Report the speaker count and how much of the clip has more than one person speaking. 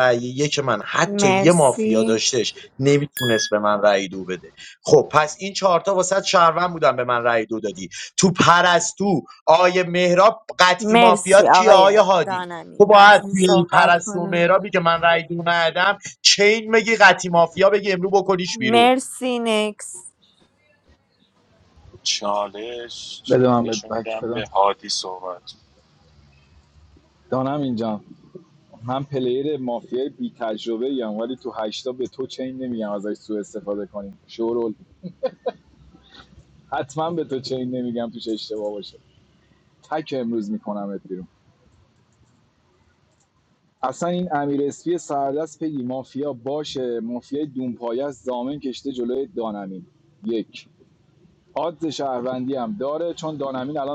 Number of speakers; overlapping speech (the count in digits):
4, about 11%